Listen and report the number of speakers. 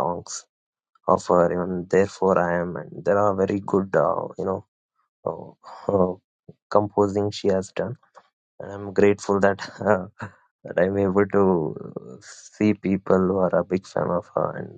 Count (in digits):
1